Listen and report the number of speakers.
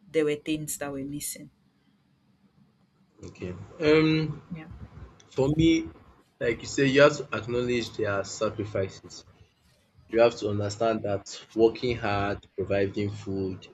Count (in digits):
2